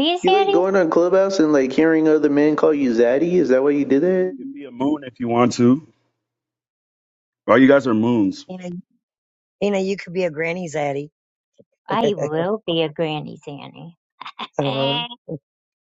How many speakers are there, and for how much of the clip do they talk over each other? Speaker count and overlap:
four, about 3%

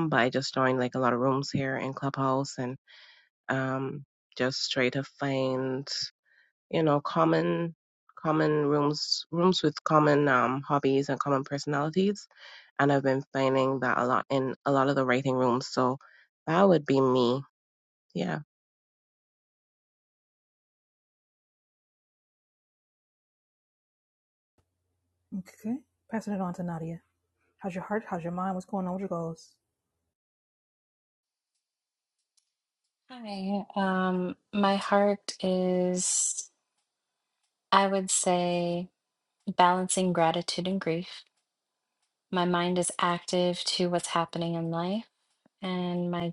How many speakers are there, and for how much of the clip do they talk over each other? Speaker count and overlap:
three, no overlap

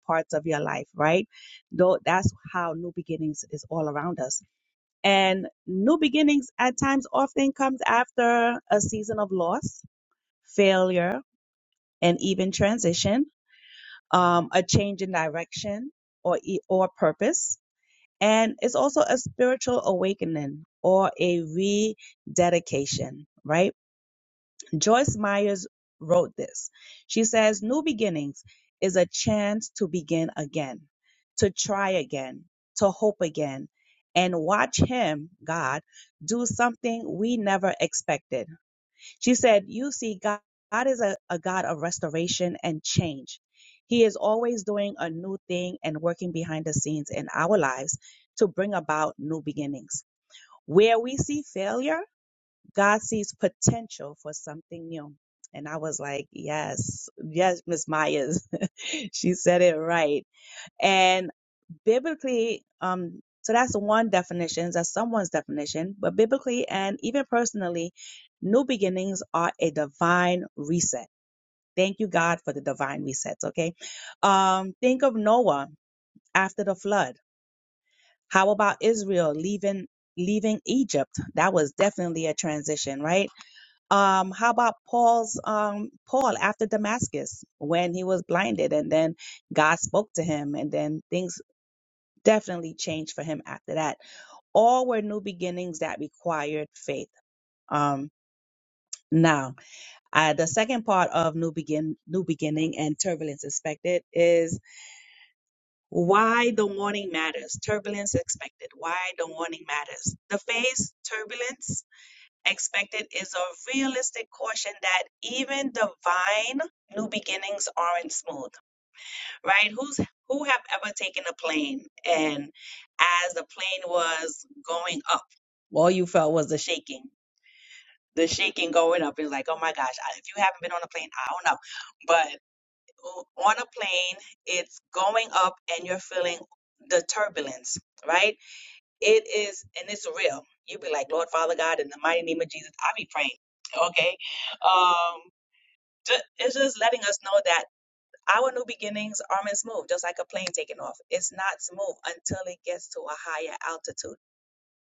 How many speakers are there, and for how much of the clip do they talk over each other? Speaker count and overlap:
one, no overlap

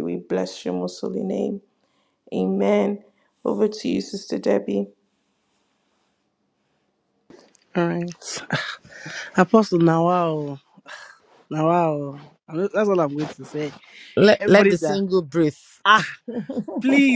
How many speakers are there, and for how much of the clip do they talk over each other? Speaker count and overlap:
three, about 3%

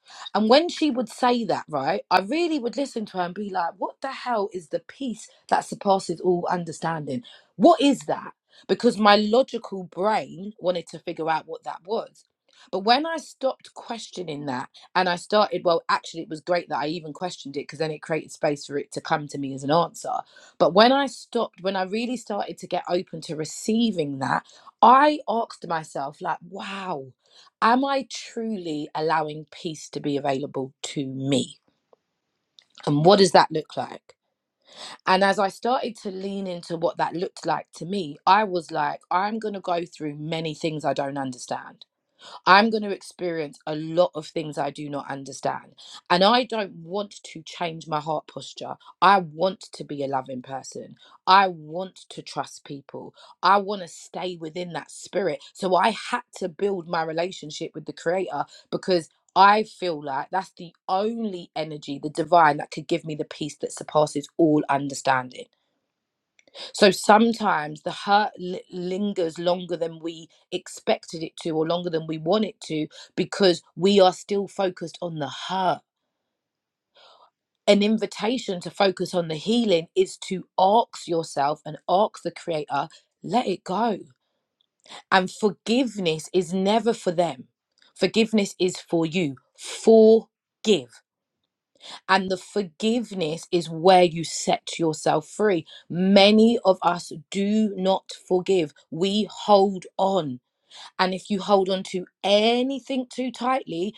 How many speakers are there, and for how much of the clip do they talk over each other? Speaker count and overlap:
one, no overlap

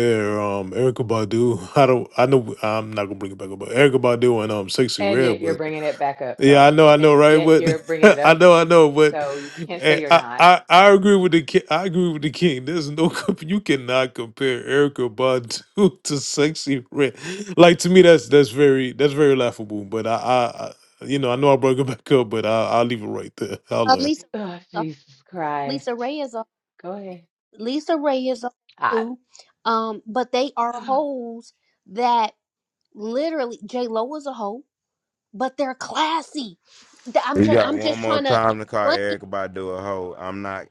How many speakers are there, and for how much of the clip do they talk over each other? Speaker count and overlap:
four, about 13%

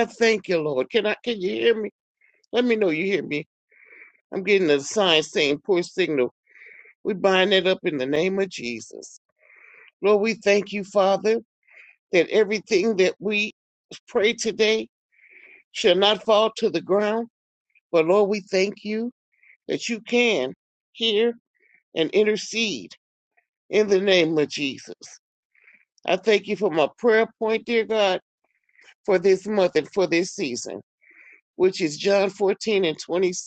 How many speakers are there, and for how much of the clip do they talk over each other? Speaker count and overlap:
one, no overlap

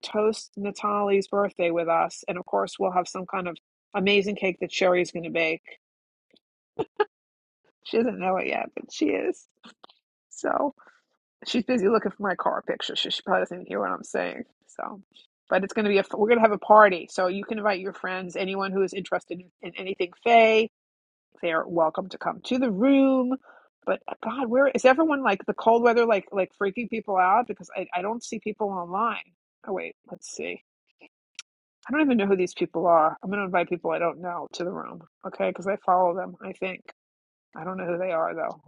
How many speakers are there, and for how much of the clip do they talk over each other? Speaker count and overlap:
one, no overlap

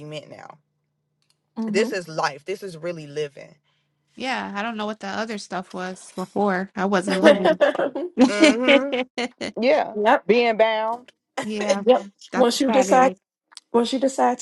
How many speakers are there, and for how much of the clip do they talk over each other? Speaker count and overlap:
three, about 6%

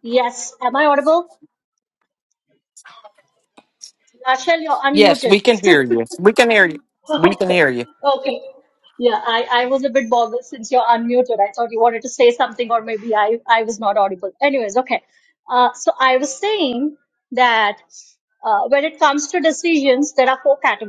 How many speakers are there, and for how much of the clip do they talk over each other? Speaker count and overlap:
two, about 2%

